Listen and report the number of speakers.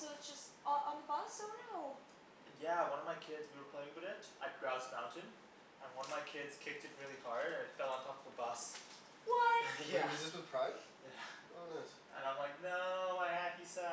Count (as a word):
three